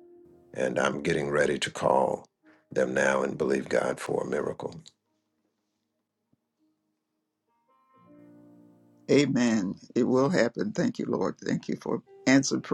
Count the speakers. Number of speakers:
2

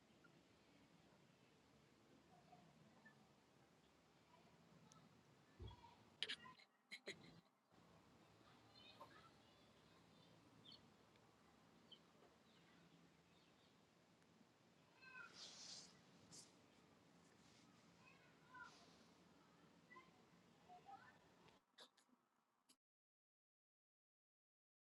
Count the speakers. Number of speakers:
0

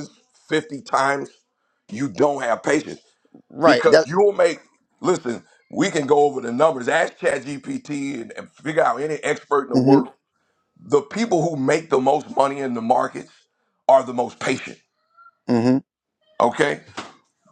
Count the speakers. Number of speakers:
2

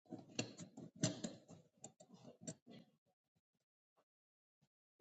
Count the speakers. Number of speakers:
0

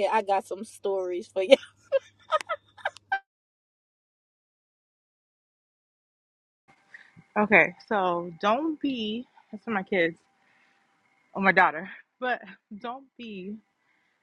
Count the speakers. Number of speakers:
2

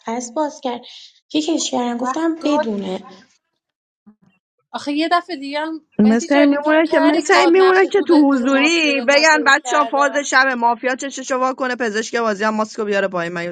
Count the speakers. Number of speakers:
3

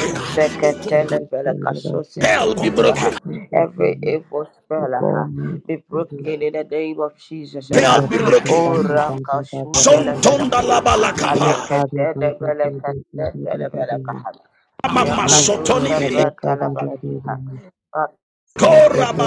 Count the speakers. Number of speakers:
3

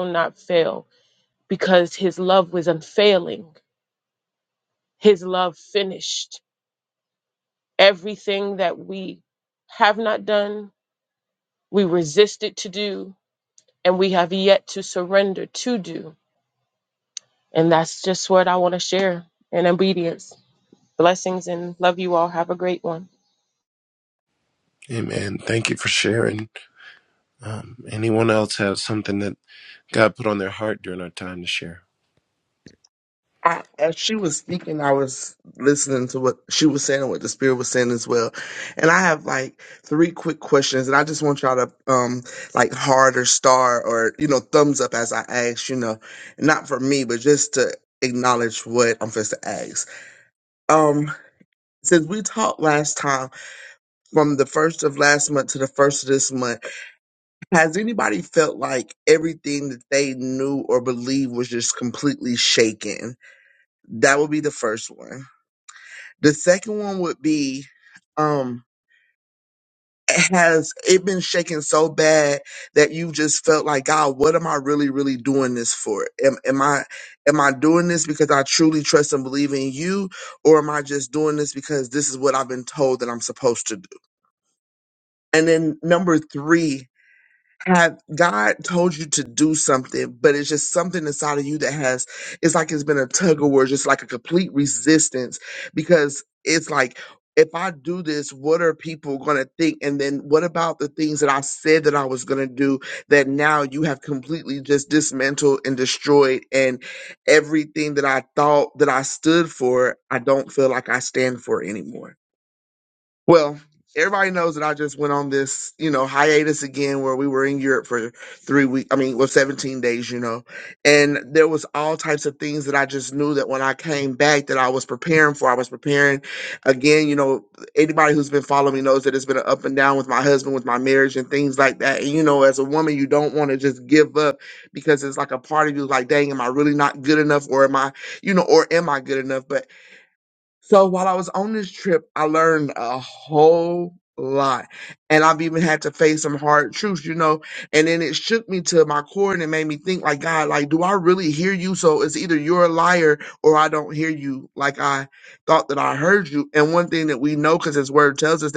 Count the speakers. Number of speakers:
3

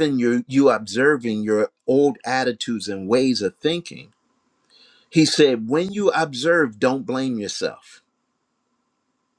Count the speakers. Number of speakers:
1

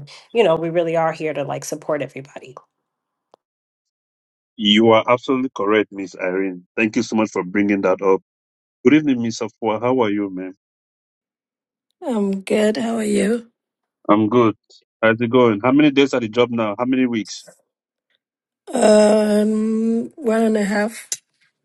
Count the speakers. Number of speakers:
3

